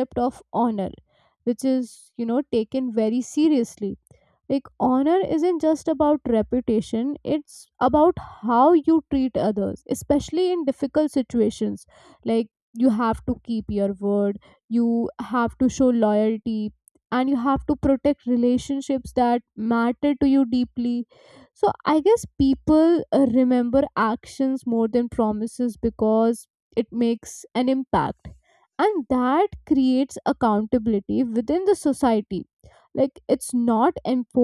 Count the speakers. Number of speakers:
1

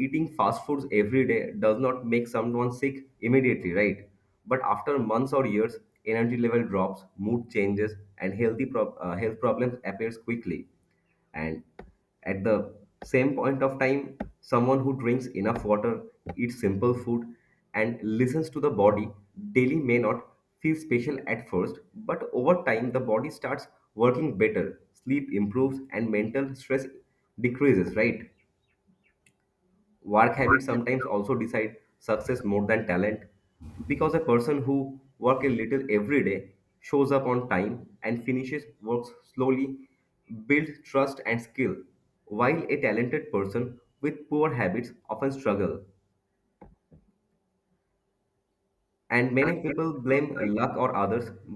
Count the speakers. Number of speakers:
1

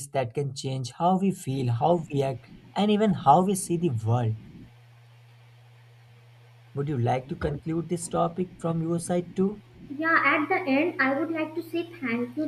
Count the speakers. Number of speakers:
2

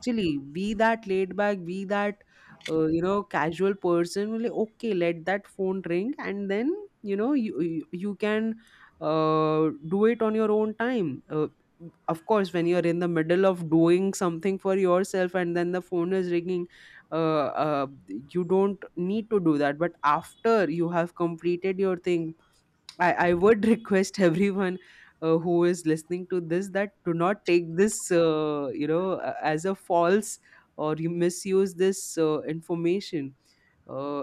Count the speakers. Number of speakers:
1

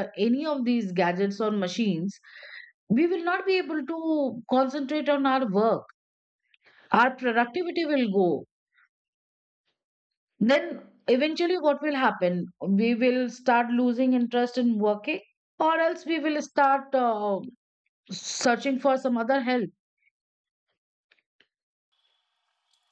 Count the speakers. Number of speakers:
1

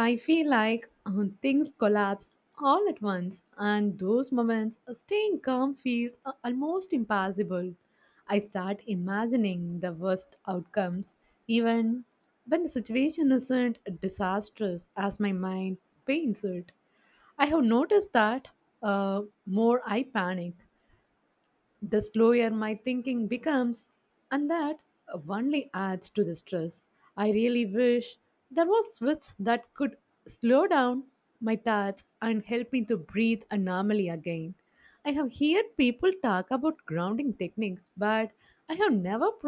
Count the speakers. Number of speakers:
1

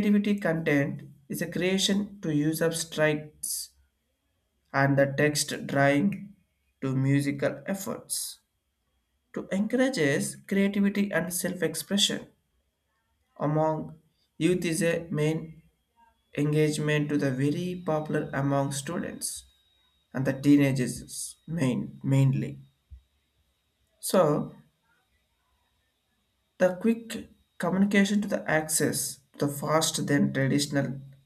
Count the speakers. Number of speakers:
1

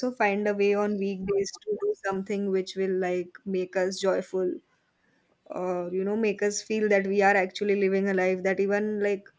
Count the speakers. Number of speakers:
1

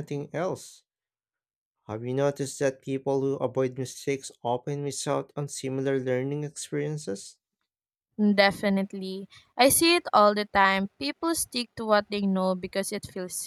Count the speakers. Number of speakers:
2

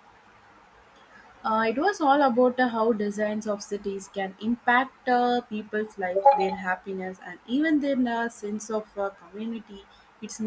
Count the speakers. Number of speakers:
1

